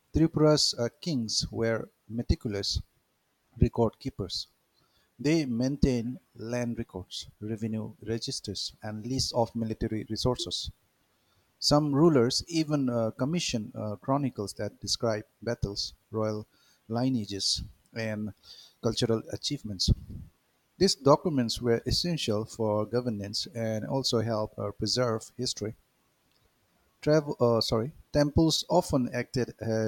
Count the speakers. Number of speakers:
one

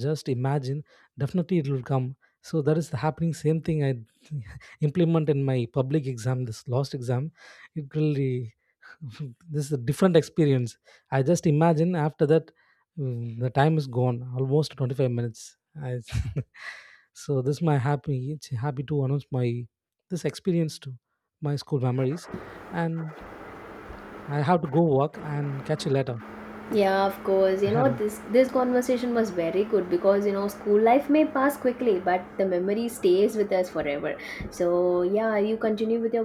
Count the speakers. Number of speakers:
two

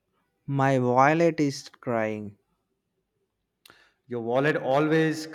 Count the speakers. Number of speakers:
two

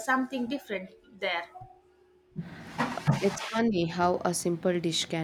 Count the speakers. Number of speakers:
two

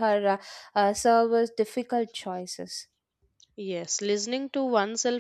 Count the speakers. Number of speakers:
two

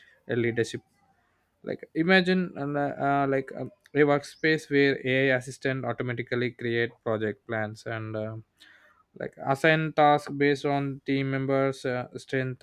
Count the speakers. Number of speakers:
one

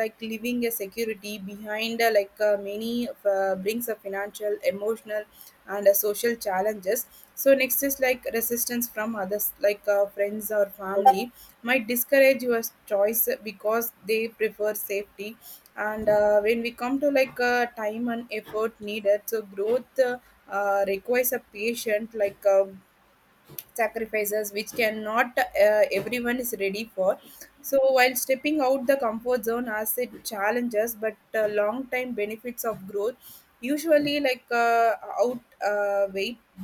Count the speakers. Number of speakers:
one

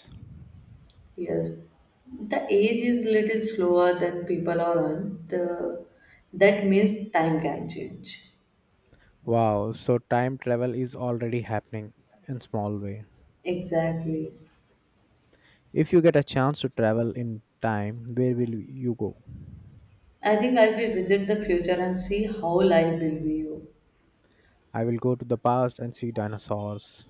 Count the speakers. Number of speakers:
two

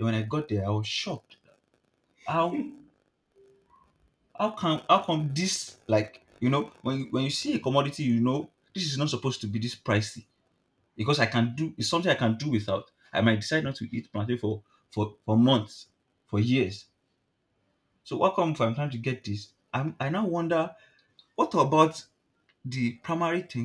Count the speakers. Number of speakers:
one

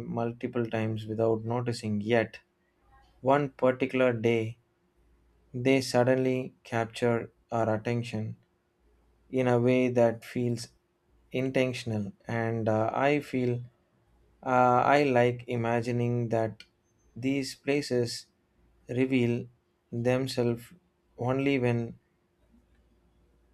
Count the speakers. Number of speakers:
one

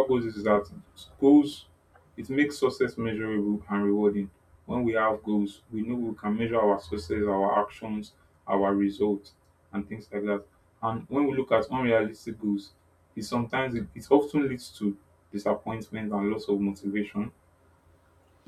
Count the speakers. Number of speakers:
one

